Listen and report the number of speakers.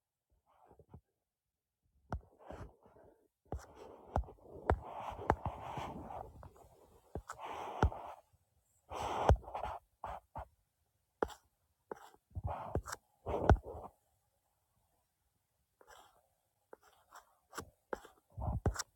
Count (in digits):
0